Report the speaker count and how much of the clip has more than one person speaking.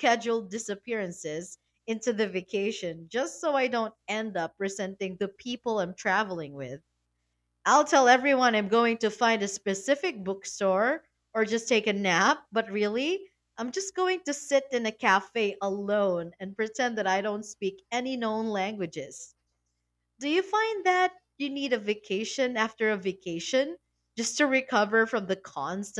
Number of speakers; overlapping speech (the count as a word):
one, no overlap